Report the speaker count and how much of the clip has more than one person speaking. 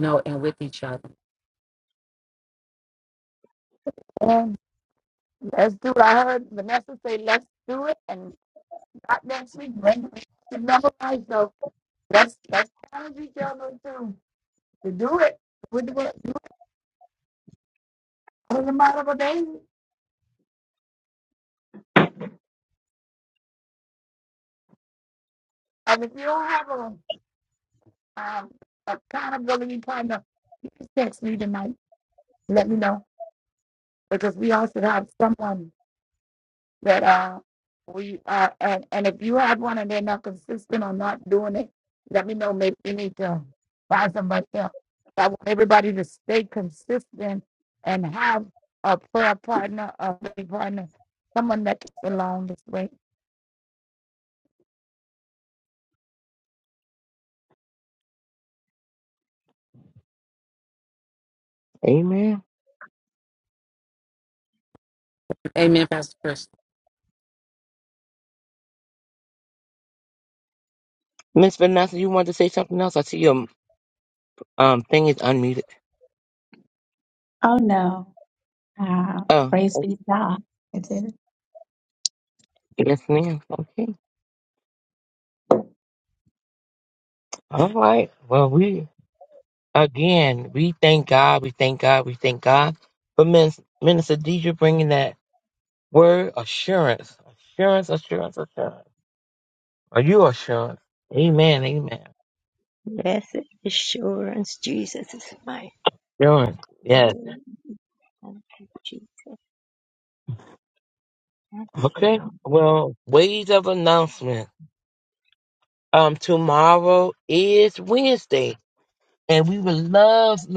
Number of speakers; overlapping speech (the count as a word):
five, about 1%